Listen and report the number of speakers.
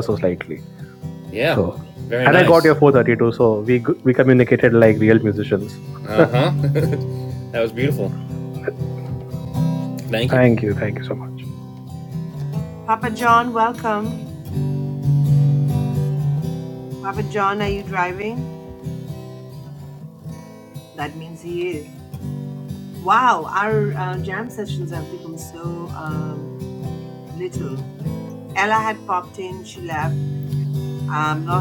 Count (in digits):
3